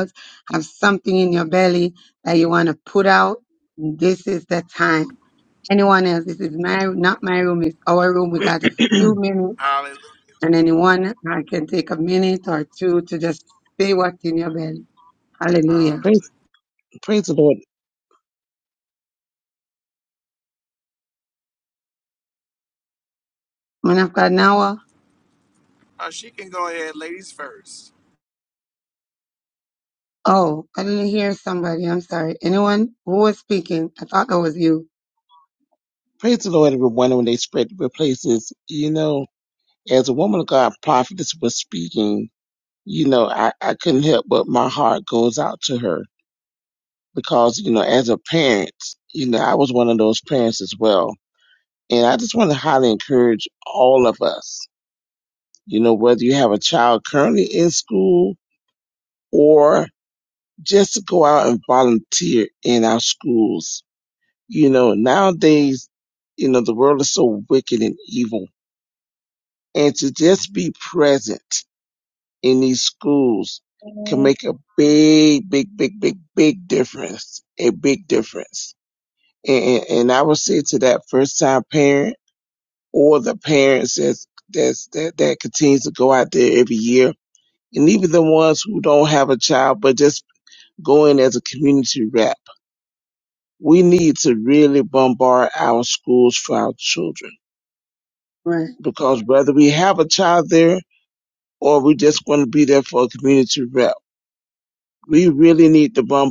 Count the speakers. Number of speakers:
3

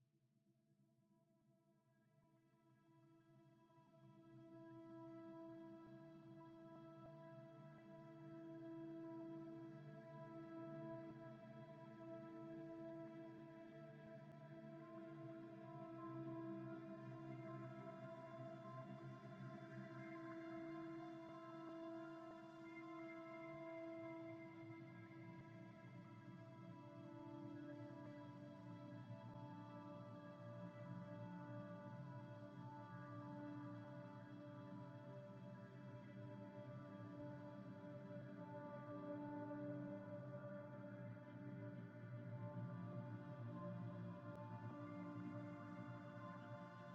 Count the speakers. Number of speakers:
0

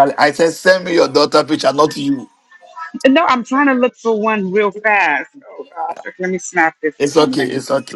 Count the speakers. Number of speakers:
2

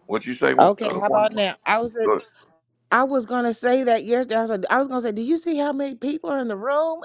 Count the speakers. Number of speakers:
2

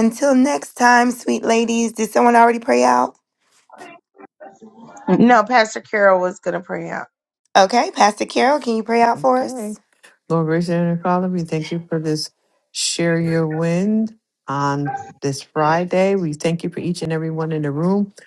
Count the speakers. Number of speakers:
3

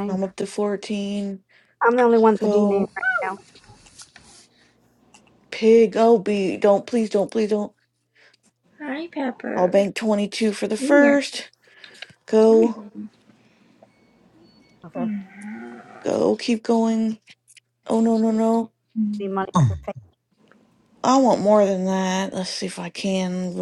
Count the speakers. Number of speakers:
3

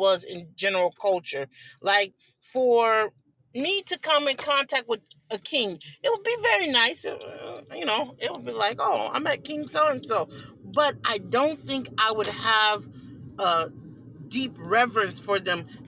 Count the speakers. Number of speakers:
1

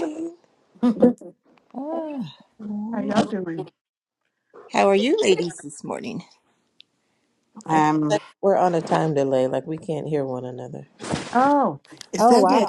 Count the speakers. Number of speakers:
3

